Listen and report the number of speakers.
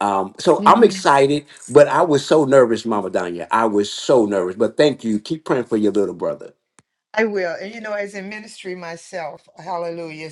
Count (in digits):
2